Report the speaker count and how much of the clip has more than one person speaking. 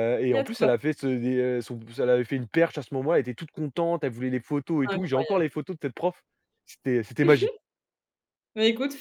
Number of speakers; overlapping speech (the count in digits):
2, about 14%